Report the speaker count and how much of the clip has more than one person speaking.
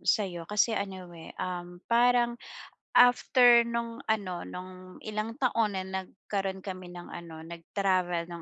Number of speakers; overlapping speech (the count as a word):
one, no overlap